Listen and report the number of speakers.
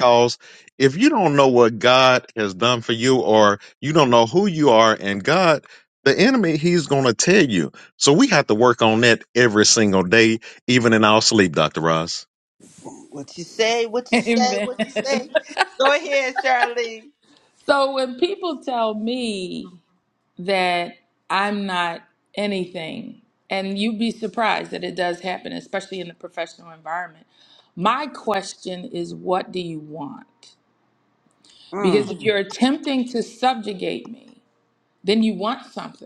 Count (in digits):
3